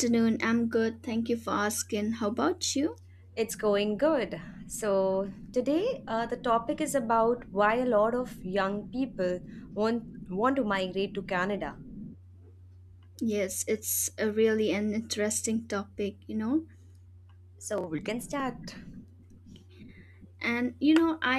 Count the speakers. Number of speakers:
2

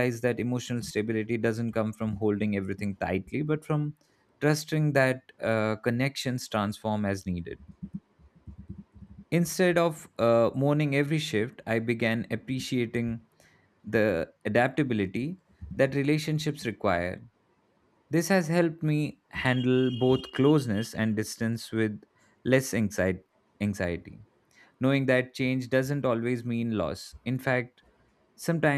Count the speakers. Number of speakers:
1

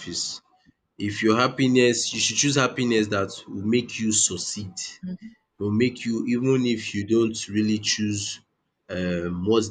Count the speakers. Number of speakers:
1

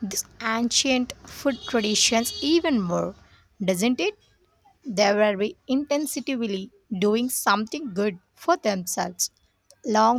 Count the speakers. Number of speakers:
1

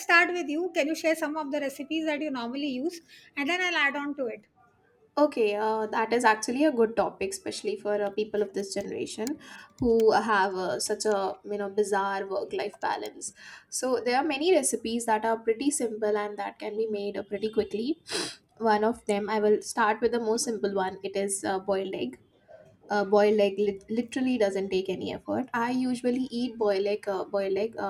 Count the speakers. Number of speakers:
2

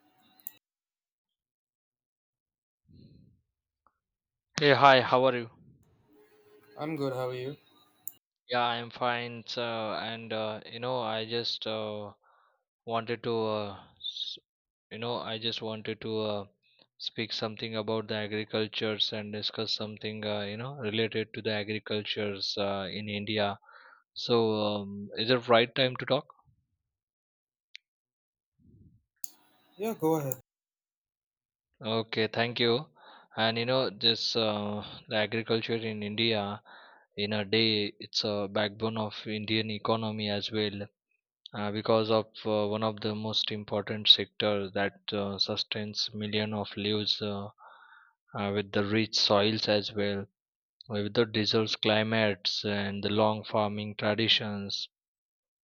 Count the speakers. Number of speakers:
2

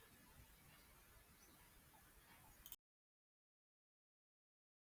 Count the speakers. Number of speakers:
0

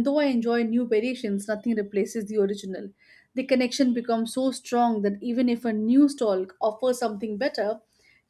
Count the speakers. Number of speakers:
1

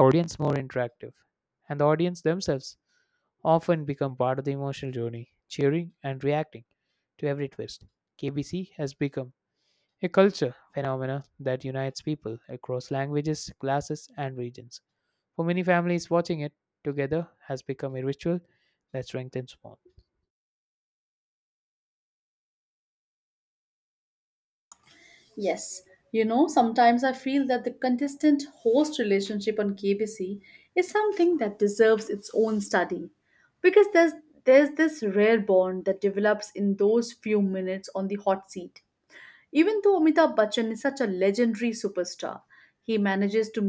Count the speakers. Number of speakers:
2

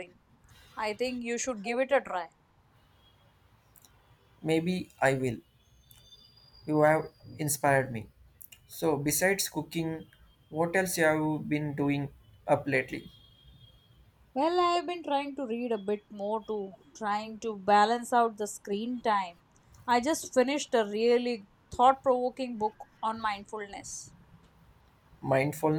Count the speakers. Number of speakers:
2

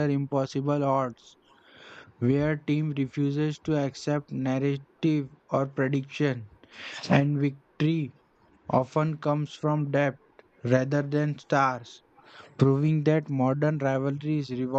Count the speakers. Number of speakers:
1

